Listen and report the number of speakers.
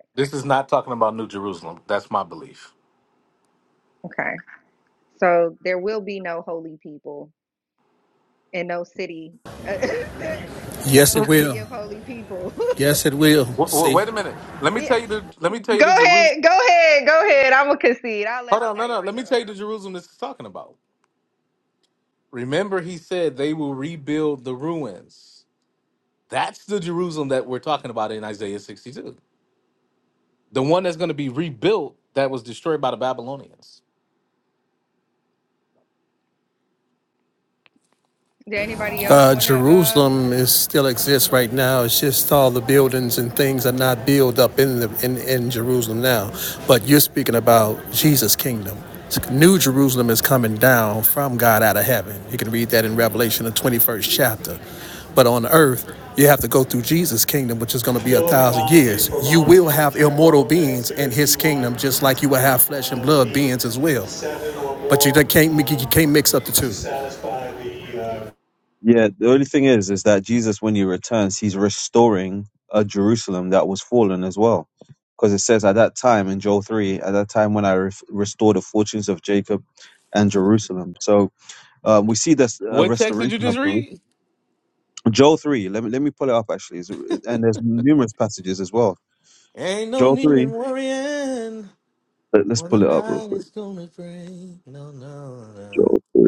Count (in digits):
4